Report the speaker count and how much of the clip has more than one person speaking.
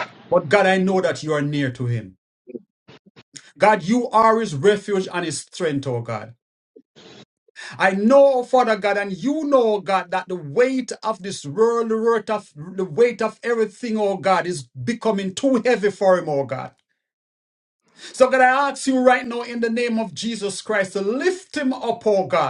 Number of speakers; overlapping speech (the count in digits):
1, no overlap